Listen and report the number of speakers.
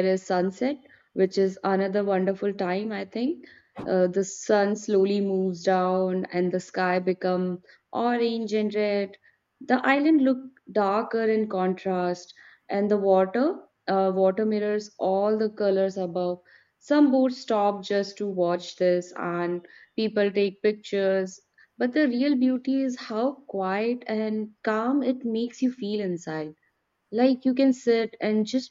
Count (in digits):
1